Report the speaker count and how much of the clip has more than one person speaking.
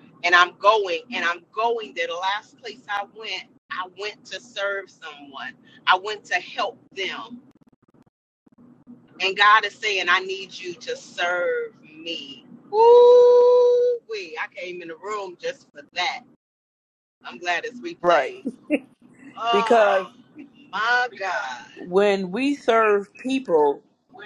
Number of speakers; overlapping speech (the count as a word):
two, about 4%